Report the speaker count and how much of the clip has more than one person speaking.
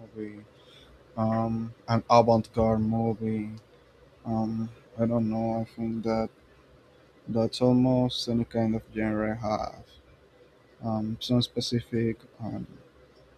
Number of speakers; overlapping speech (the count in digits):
1, no overlap